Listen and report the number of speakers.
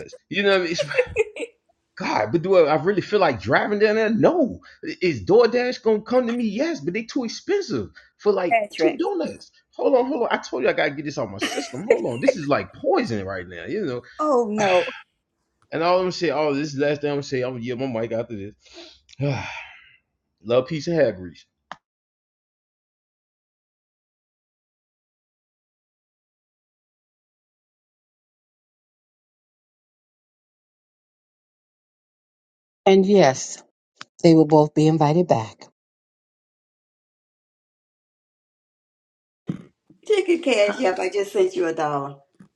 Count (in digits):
3